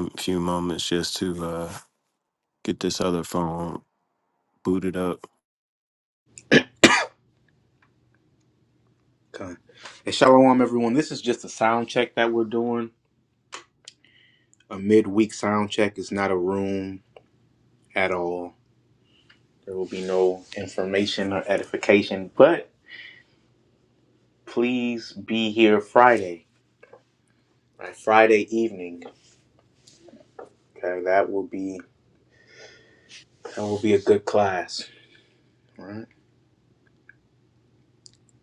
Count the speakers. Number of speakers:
two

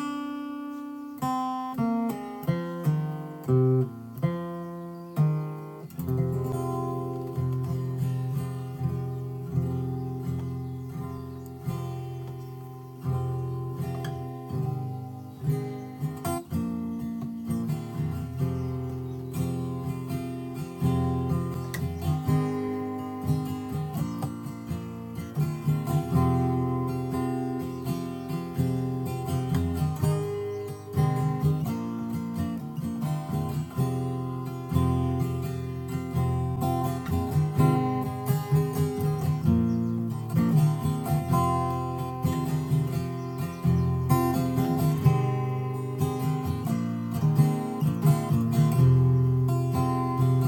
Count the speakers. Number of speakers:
zero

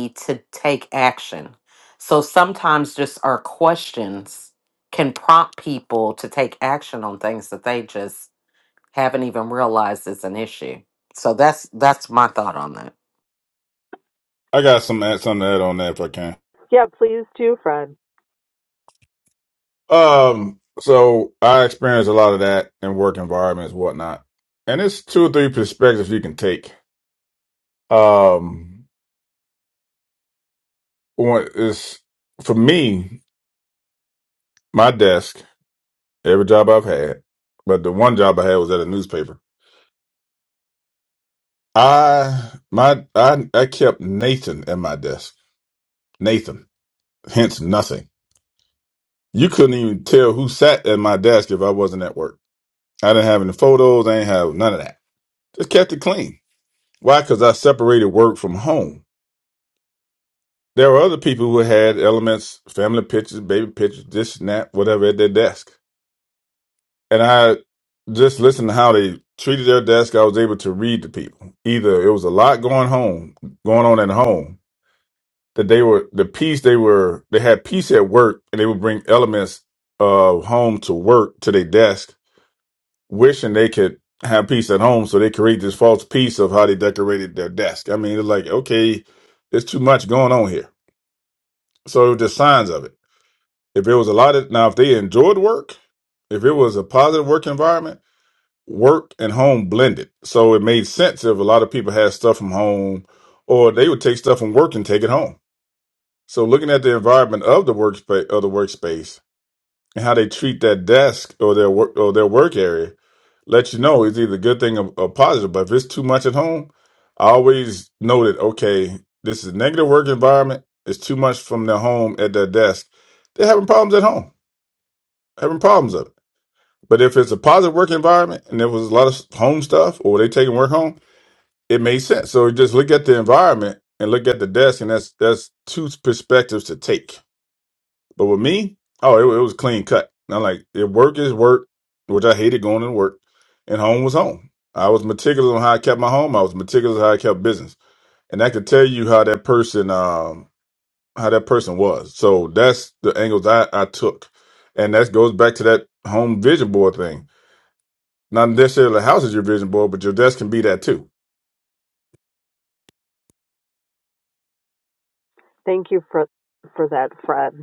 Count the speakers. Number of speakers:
three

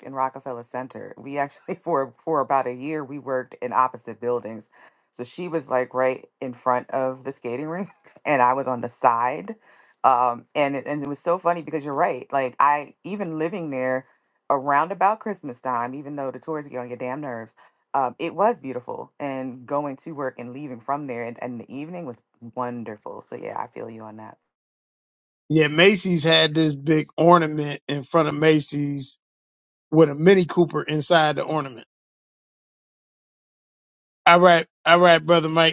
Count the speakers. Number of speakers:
two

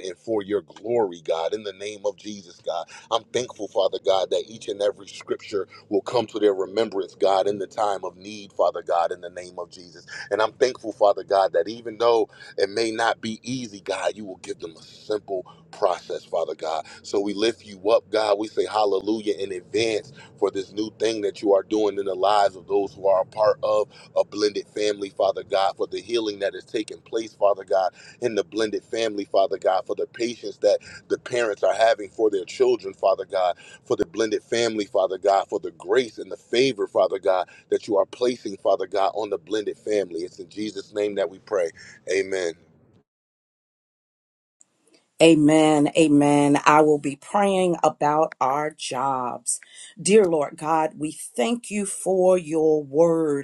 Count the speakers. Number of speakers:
two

